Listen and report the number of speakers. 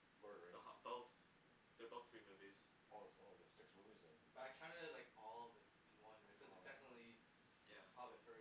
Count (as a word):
three